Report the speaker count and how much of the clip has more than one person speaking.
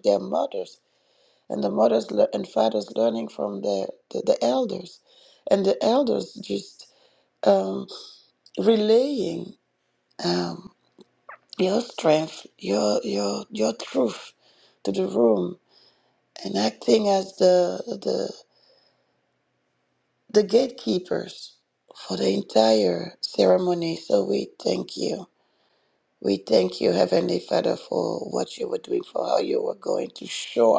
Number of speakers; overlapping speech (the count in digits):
1, no overlap